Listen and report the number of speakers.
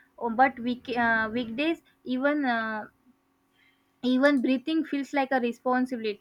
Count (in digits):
1